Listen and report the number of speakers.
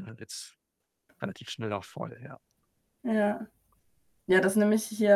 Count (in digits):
2